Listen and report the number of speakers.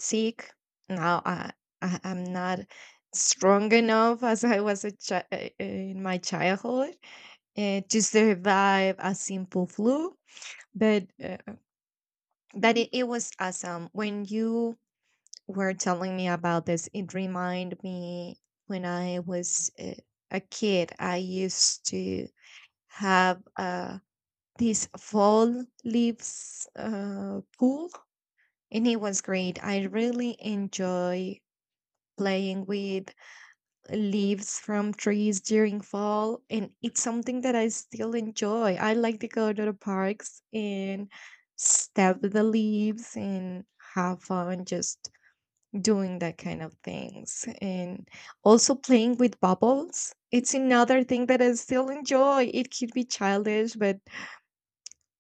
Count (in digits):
1